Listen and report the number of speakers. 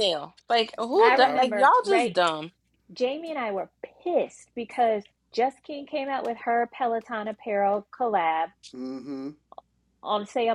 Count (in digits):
3